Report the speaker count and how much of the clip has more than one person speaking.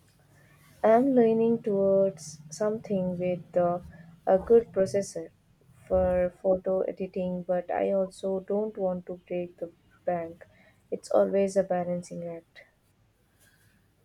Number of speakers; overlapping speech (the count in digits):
1, no overlap